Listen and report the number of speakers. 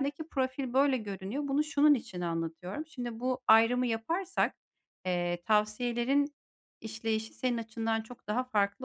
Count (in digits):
1